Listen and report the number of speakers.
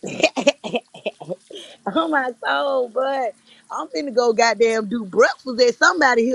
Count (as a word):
one